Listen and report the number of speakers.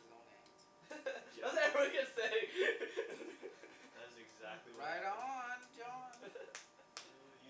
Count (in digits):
3